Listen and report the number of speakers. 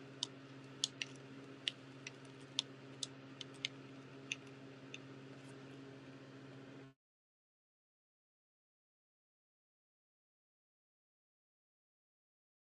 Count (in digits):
0